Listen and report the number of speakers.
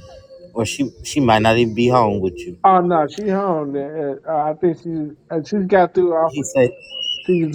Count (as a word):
two